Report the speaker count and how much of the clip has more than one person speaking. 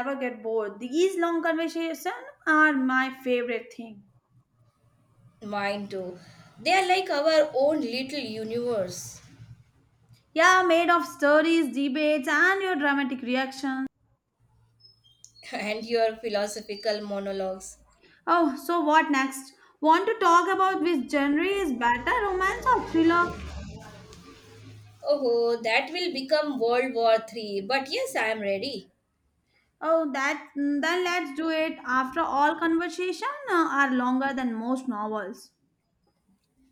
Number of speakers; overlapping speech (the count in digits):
2, no overlap